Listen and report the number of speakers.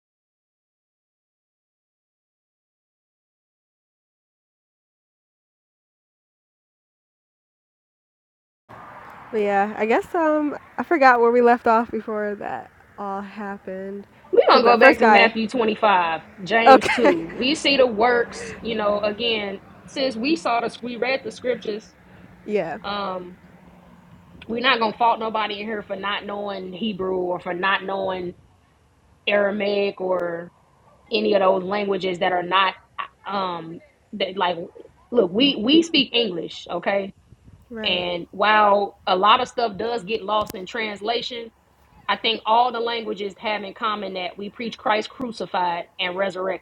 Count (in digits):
2